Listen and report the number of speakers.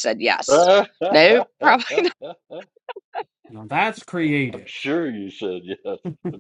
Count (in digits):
3